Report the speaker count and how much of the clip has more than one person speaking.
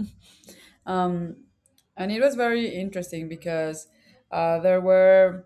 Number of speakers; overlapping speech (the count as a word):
one, no overlap